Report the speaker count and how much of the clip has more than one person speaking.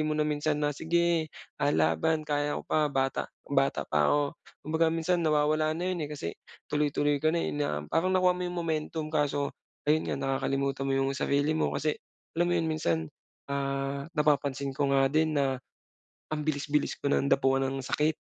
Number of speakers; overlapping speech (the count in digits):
1, no overlap